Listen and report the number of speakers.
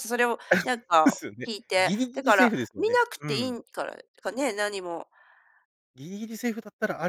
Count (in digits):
2